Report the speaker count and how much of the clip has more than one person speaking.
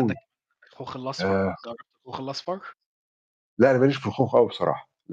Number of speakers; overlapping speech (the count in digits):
2, about 11%